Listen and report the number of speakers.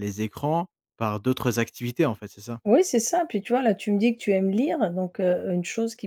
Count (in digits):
2